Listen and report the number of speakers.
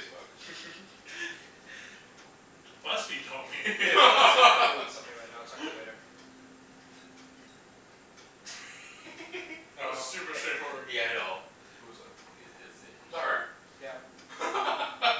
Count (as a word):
four